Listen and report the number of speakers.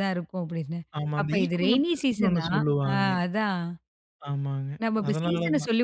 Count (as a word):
two